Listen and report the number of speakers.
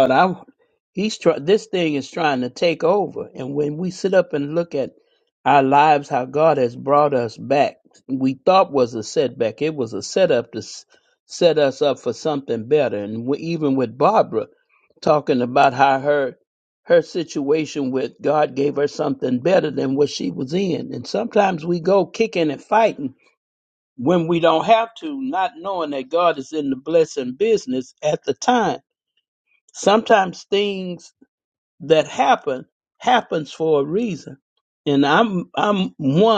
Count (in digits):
1